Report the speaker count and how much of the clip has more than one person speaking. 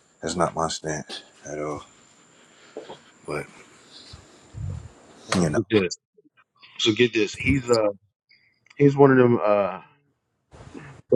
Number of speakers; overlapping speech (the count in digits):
2, about 3%